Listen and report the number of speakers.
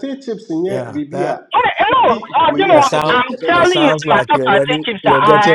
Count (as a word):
three